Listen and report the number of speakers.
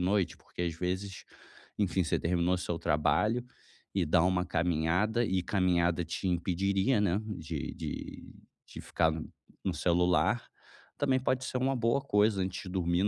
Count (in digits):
1